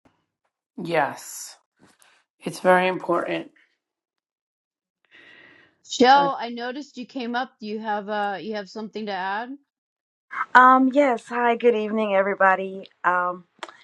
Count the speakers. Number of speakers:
3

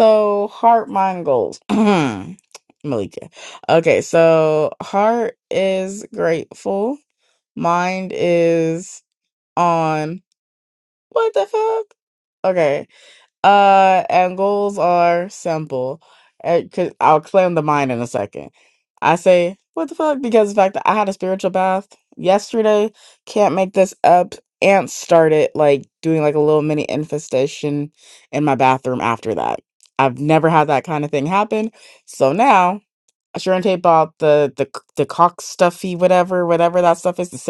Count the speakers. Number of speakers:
1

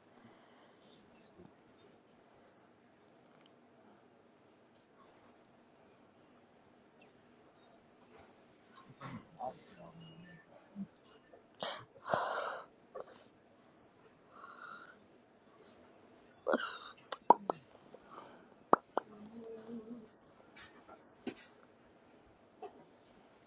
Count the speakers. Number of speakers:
0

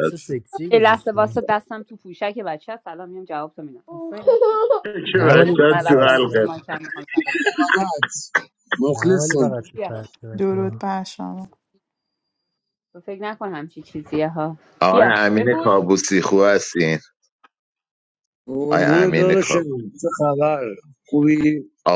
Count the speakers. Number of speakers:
5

